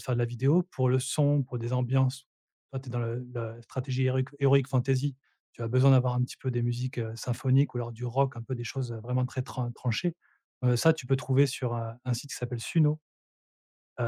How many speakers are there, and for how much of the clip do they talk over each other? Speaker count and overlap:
one, no overlap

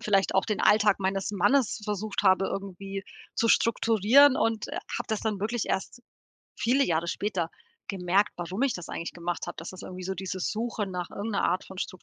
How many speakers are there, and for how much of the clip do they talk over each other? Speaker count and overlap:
one, no overlap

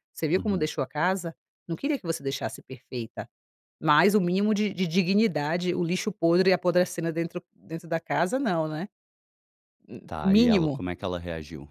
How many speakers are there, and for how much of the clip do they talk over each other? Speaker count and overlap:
two, about 8%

